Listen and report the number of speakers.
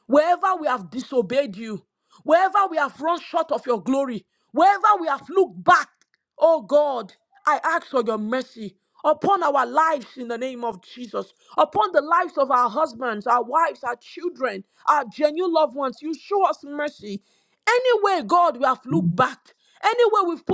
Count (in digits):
1